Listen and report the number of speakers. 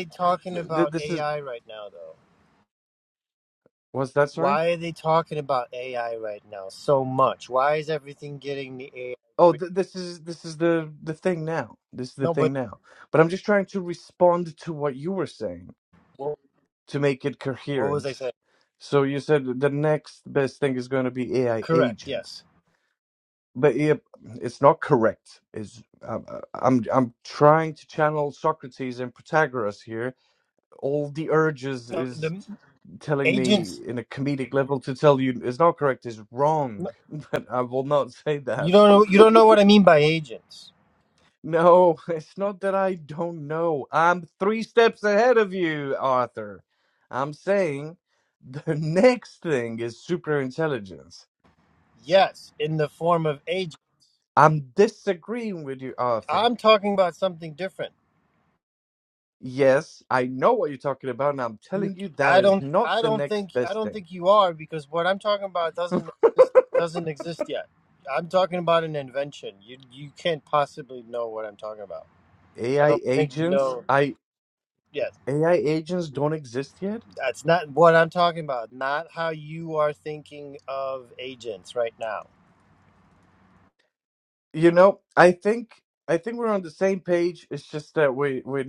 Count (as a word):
two